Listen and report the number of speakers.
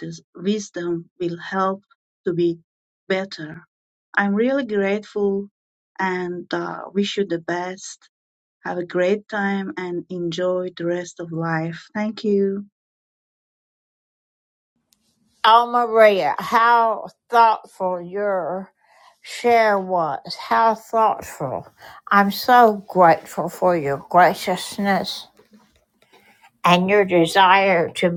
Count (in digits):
2